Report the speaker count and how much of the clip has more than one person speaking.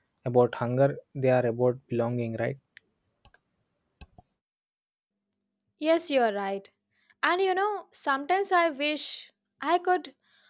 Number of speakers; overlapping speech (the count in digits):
2, no overlap